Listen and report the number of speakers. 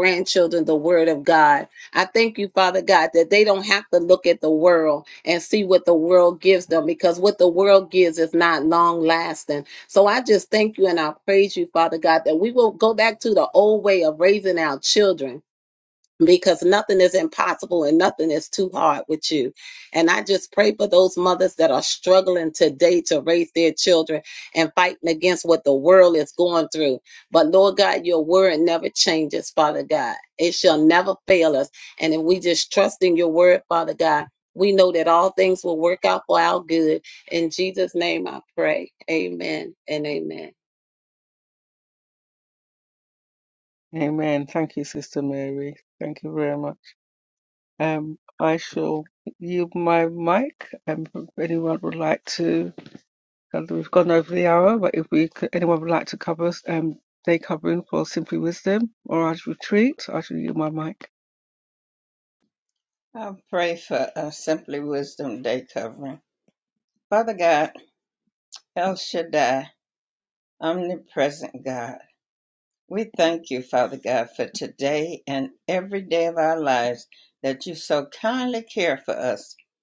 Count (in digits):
3